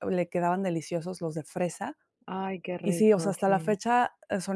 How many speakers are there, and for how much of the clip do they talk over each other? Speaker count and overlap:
two, about 19%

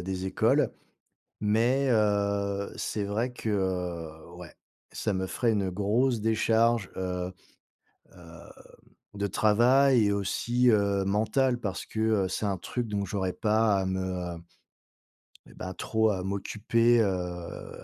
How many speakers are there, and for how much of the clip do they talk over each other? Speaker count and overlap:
one, no overlap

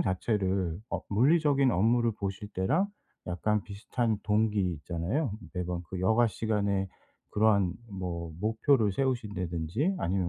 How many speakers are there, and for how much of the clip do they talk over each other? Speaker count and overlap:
one, no overlap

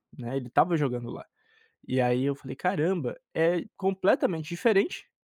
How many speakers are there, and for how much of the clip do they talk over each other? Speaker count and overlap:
one, no overlap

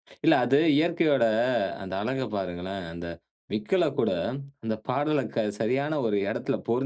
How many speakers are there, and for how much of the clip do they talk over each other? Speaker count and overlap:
one, no overlap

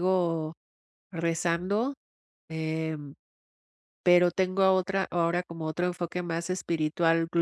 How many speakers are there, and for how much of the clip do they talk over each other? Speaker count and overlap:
one, no overlap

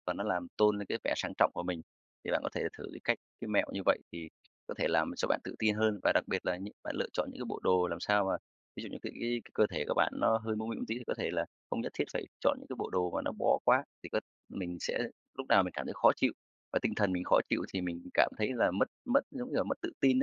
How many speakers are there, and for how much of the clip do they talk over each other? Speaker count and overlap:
one, no overlap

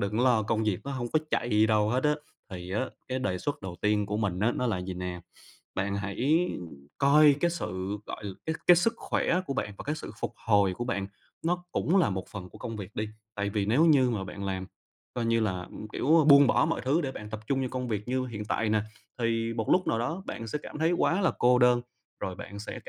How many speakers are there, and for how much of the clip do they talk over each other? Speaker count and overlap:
one, no overlap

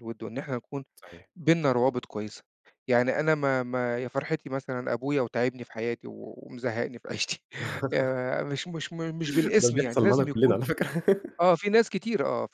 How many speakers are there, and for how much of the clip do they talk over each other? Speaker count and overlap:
two, about 8%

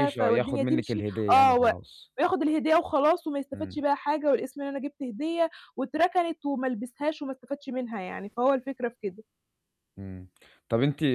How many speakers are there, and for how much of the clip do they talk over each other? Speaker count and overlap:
two, about 18%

